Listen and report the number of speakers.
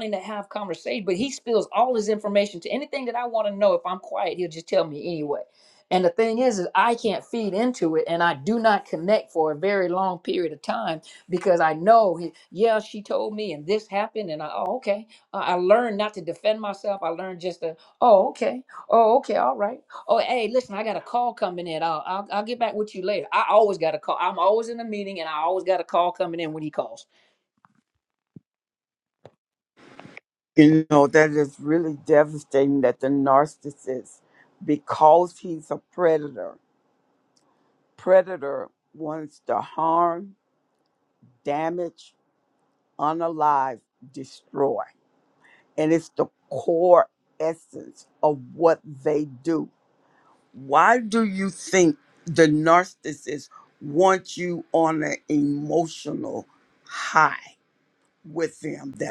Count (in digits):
2